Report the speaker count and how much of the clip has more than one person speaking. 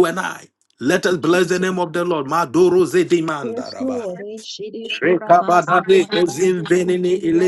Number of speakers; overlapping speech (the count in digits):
2, about 45%